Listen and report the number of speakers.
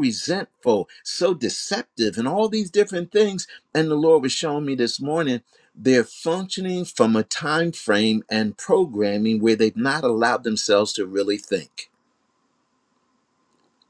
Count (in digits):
1